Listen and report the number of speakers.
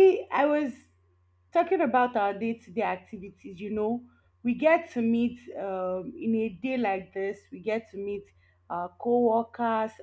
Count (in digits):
1